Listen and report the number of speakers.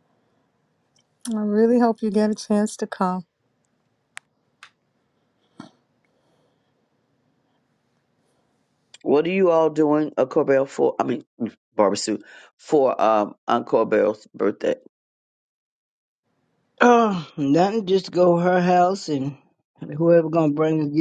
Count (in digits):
3